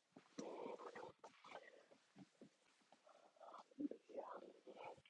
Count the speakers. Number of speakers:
0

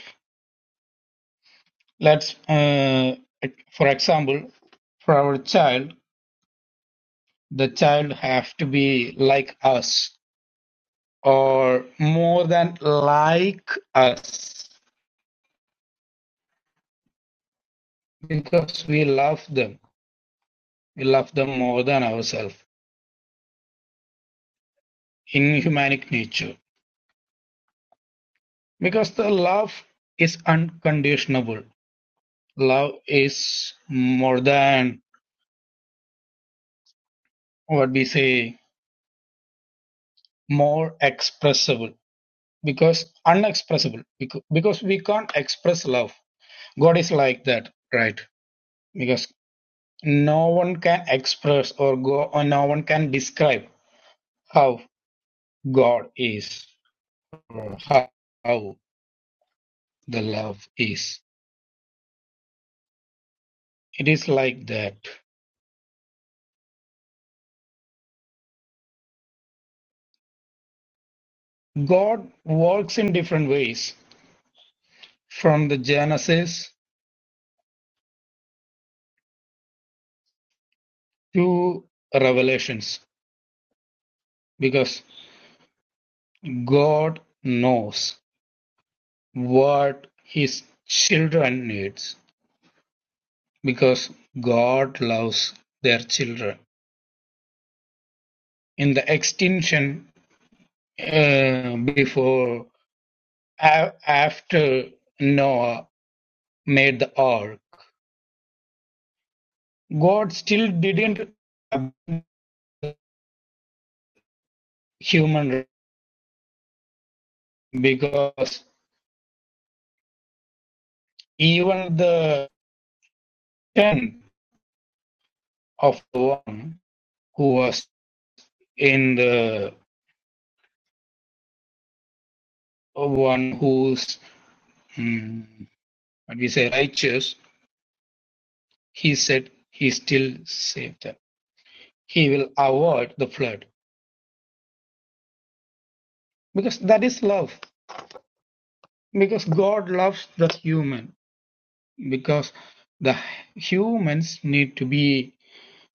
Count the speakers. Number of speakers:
1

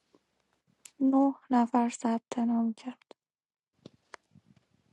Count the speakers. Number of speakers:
1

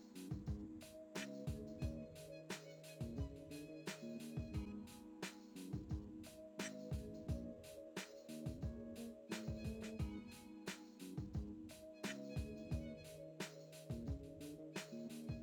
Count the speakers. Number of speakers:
0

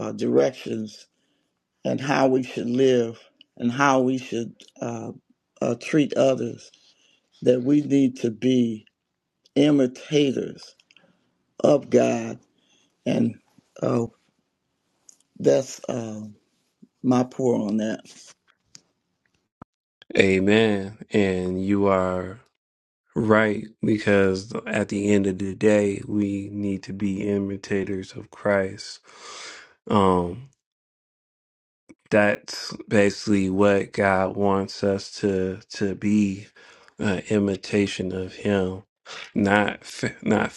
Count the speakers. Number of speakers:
2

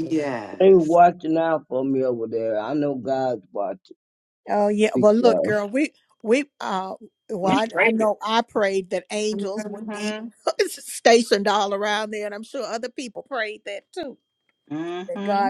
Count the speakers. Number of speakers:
3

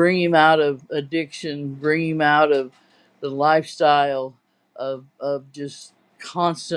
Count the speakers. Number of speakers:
1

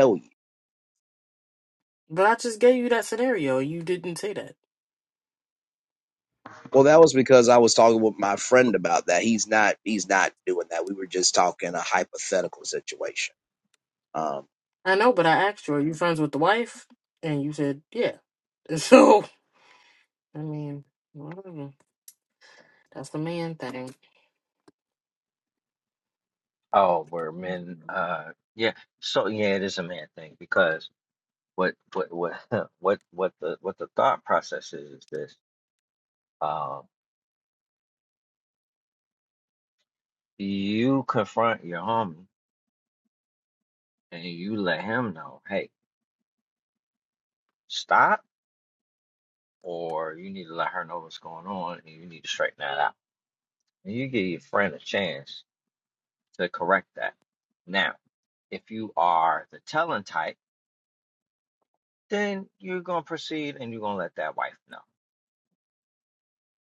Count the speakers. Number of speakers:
3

